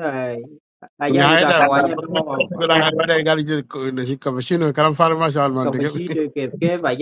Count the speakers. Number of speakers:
two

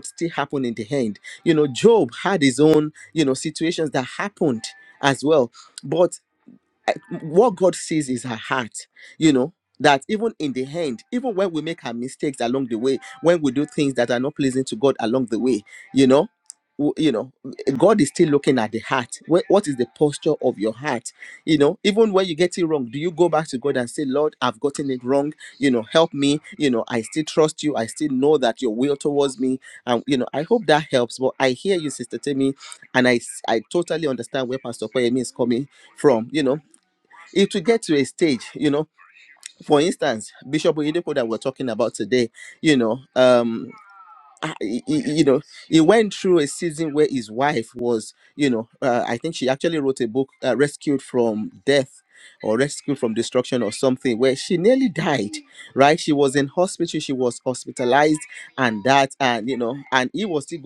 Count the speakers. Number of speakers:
one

